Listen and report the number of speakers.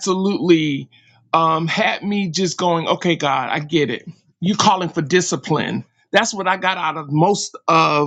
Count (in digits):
1